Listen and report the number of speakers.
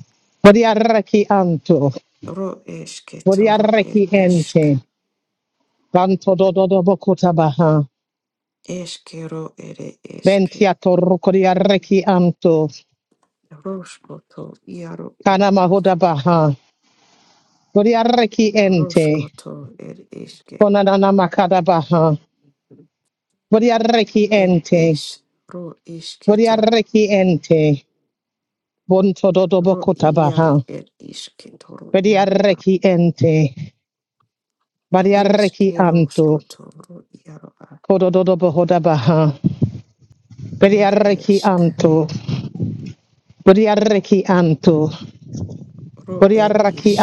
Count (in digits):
2